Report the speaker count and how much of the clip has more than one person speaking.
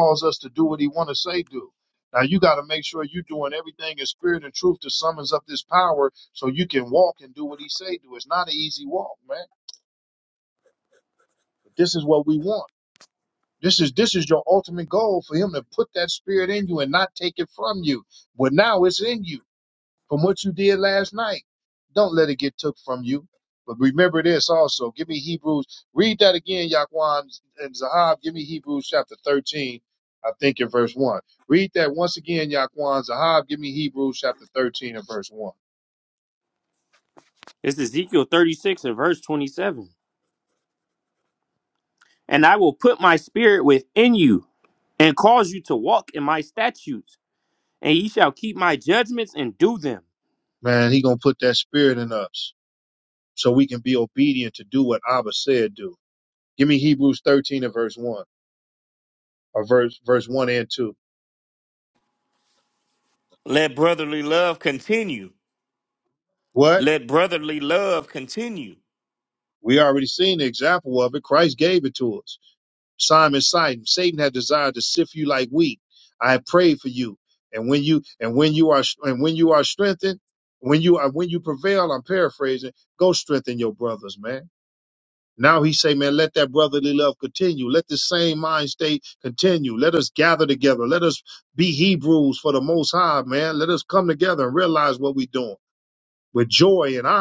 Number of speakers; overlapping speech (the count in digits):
3, under 1%